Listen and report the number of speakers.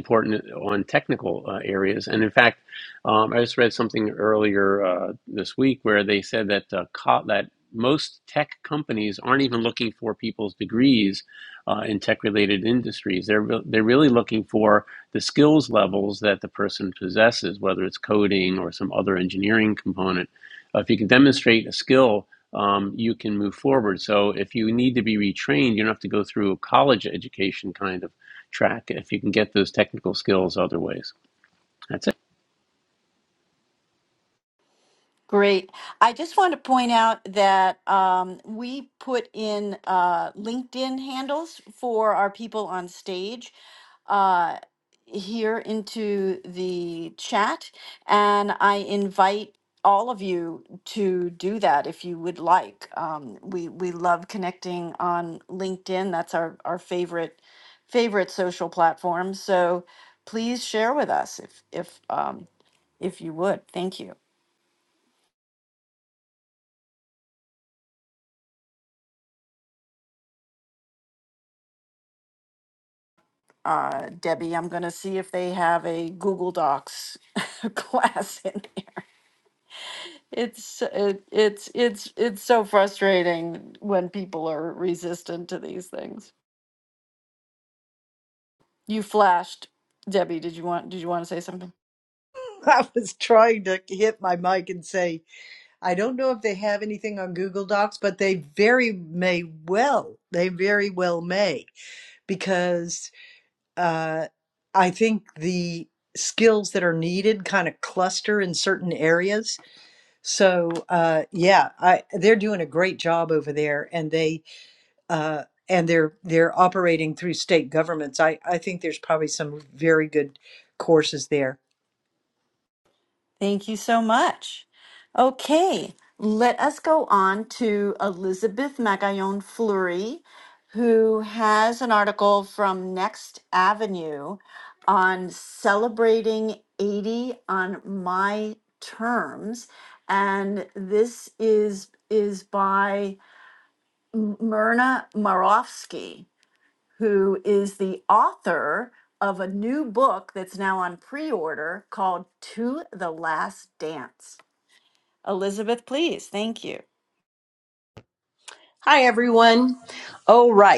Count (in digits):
4